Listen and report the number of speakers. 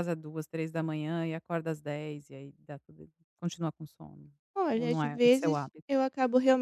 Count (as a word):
two